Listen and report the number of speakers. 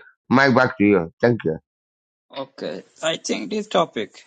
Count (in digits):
2